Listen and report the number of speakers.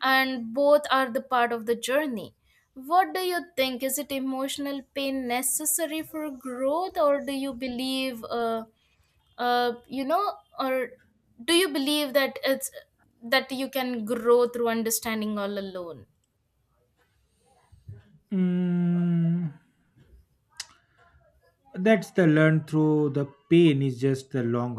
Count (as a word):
two